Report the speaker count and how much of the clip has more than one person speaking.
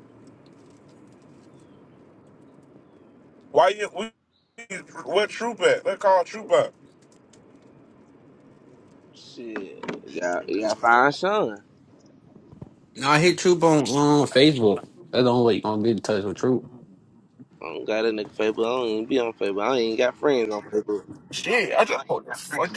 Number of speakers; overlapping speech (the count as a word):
four, no overlap